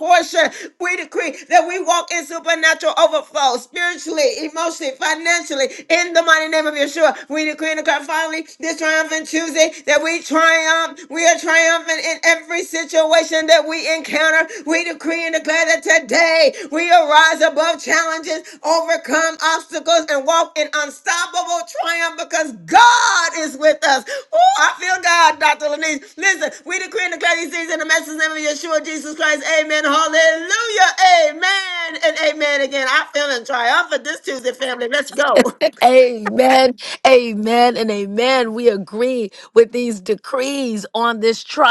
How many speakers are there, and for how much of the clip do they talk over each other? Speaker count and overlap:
two, no overlap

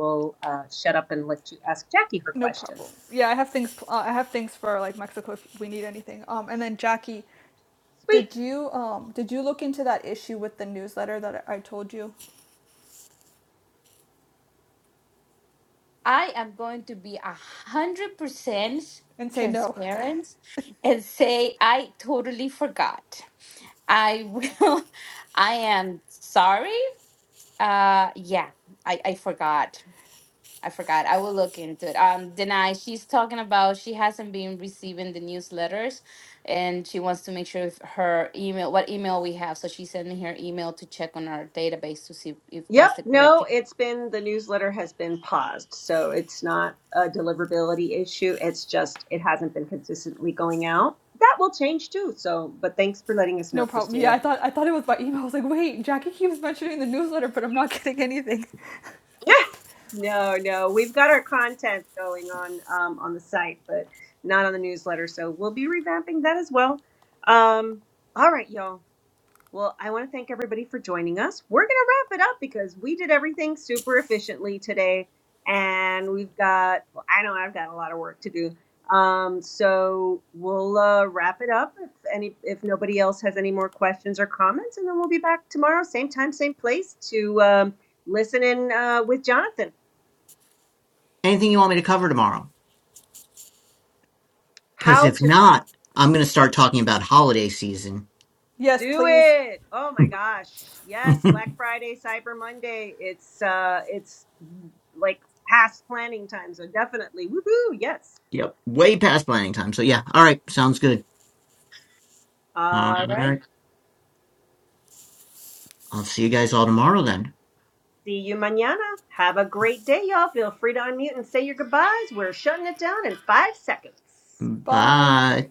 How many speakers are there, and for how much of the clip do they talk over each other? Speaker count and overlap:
four, about 4%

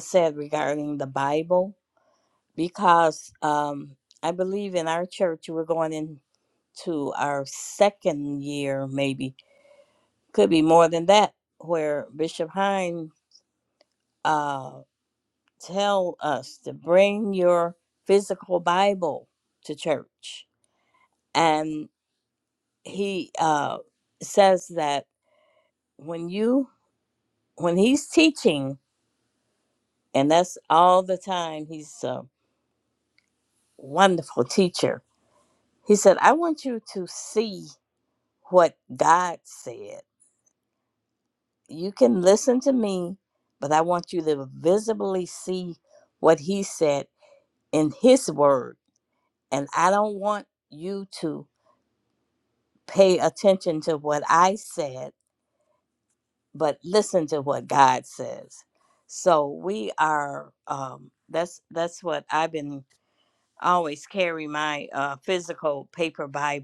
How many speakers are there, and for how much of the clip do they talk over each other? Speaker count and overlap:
one, no overlap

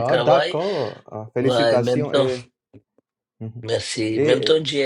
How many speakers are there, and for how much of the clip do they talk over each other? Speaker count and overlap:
two, about 40%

